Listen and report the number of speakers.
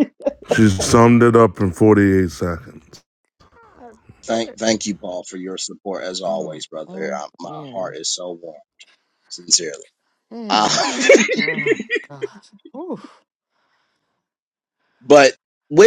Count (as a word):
three